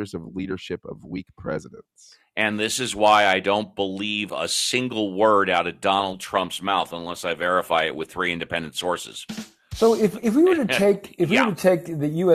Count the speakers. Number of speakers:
3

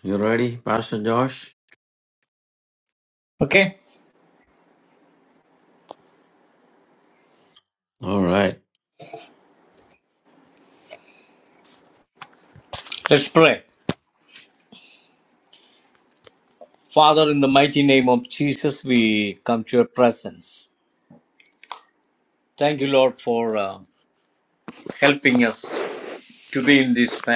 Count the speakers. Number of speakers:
2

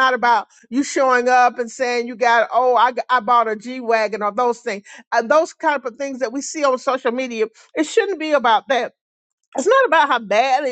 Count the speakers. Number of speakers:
1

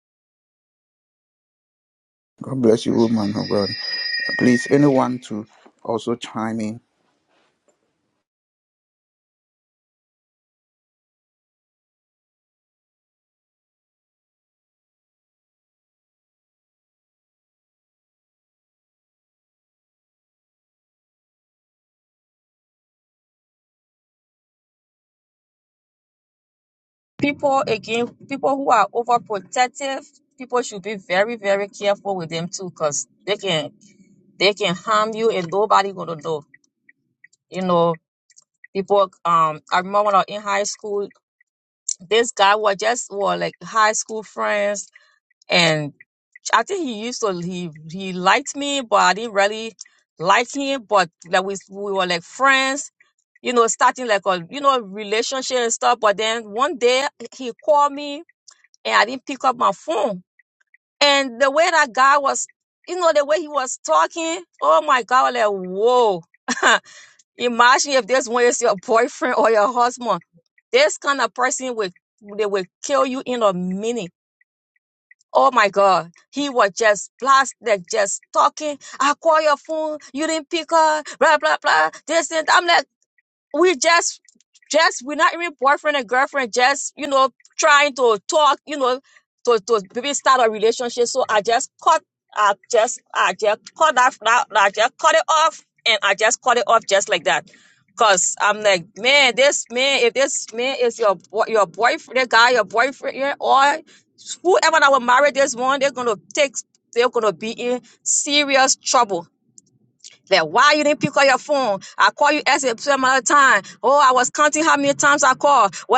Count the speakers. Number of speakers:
2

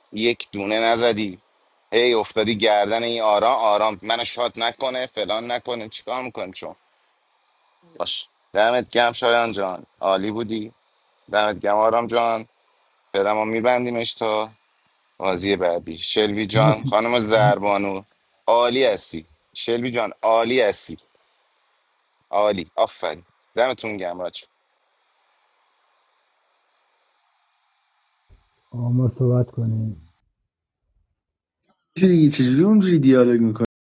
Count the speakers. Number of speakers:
3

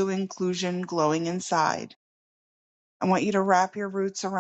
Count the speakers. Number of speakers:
1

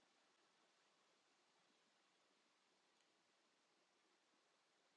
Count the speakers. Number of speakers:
0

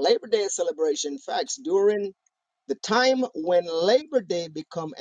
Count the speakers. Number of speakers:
1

